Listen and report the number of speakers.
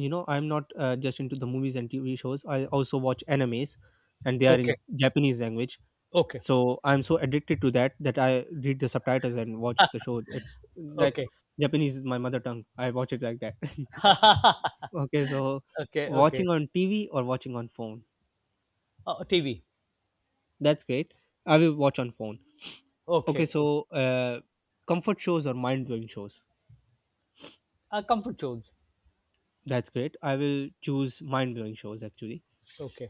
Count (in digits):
2